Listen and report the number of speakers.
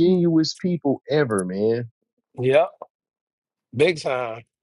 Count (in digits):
2